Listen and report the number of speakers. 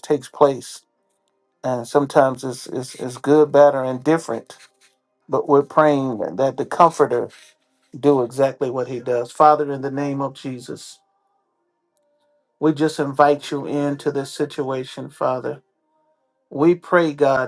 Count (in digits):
1